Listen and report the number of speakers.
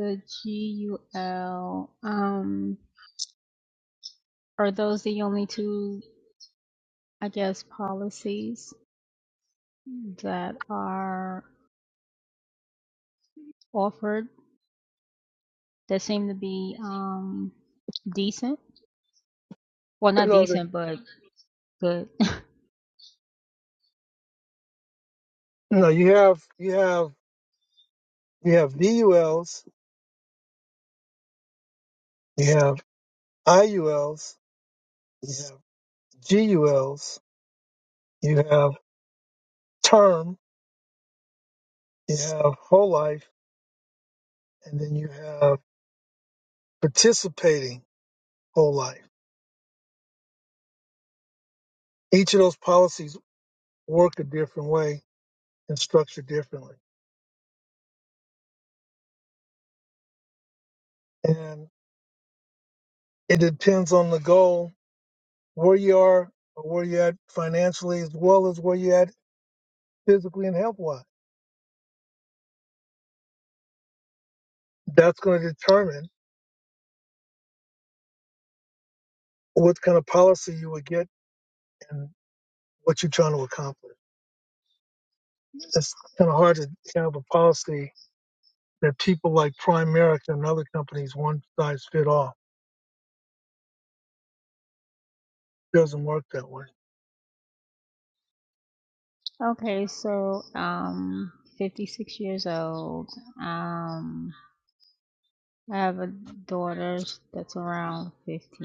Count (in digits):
2